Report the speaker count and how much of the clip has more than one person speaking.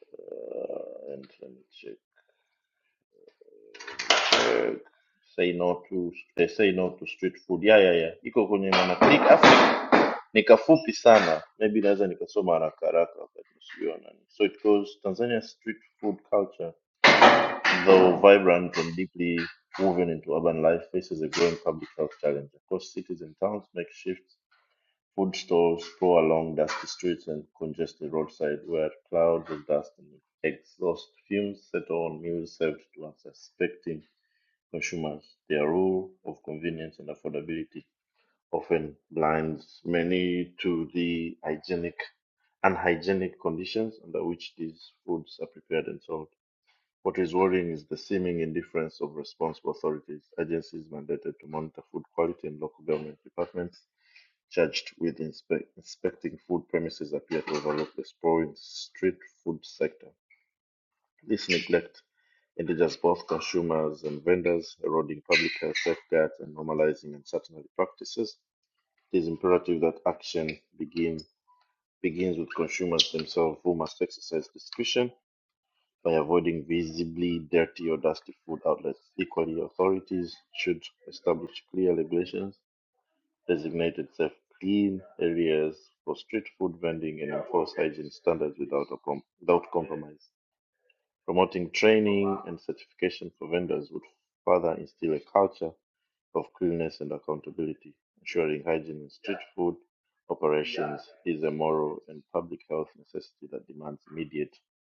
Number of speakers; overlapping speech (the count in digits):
1, no overlap